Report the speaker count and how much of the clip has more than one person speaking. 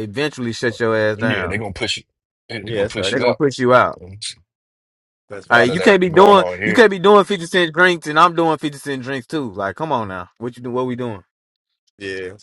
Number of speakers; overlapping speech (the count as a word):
three, about 19%